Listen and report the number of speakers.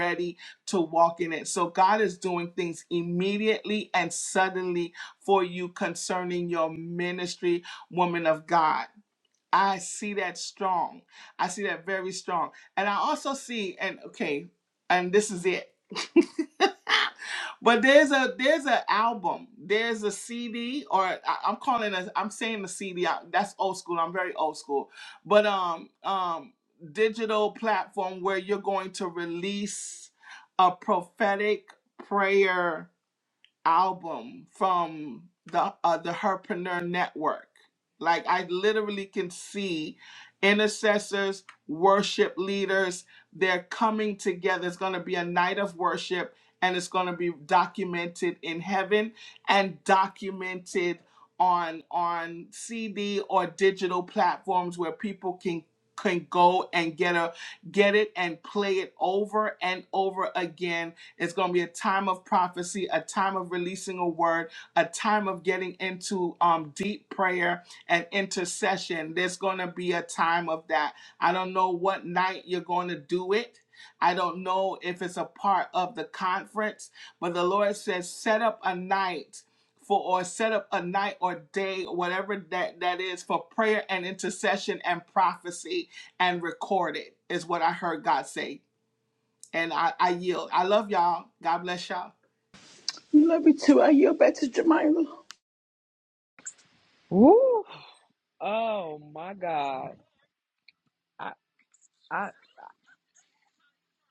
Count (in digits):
3